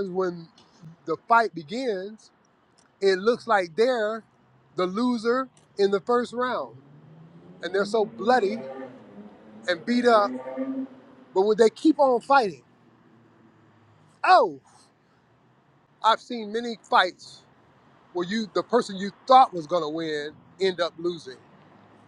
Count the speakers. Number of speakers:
1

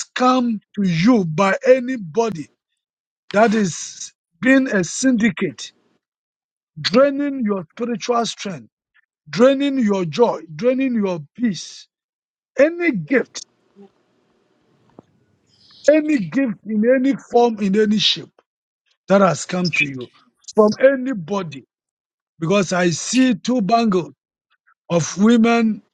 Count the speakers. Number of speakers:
1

